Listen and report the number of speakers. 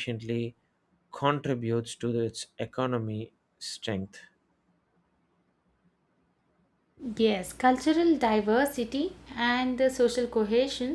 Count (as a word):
two